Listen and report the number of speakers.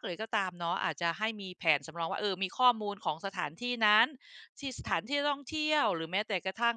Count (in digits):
1